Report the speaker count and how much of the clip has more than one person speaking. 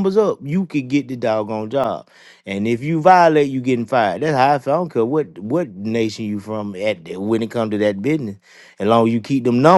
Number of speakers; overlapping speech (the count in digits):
1, no overlap